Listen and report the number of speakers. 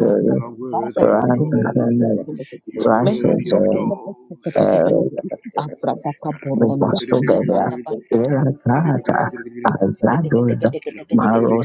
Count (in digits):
3